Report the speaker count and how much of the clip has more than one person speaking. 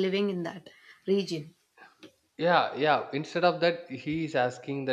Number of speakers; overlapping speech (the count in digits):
2, no overlap